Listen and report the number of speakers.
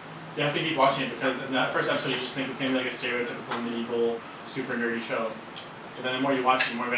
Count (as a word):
one